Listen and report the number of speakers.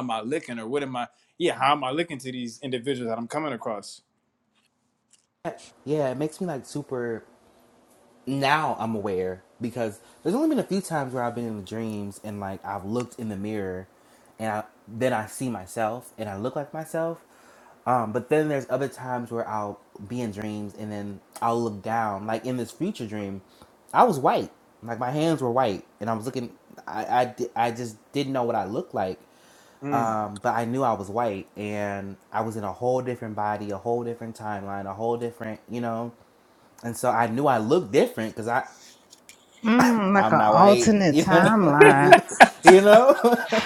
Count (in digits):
3